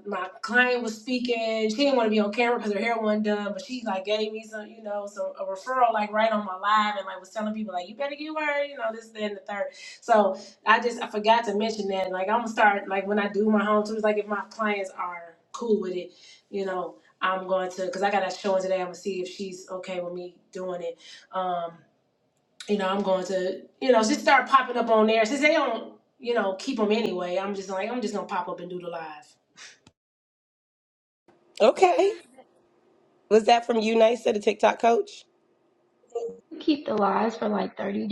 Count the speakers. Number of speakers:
three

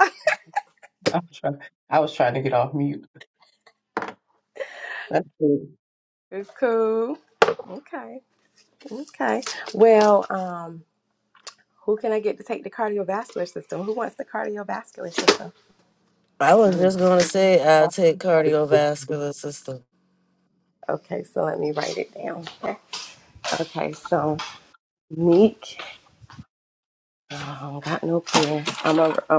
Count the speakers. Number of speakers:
three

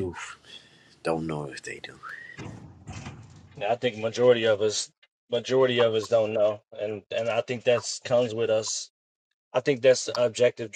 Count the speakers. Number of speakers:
two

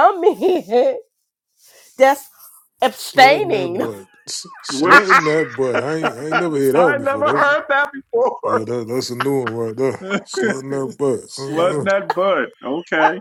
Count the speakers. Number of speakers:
three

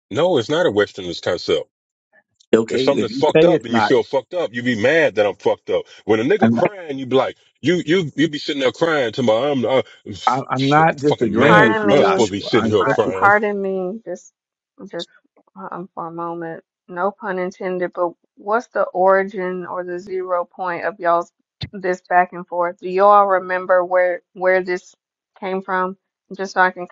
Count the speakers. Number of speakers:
three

